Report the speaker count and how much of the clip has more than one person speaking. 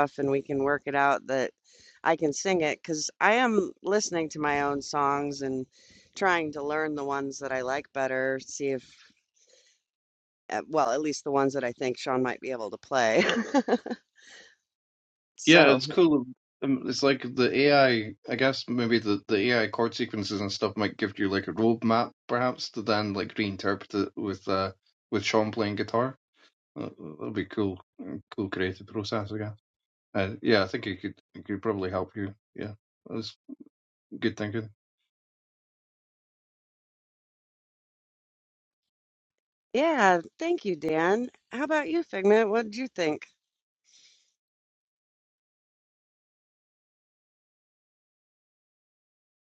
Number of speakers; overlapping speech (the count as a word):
two, about 1%